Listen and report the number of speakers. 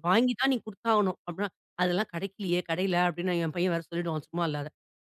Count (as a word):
one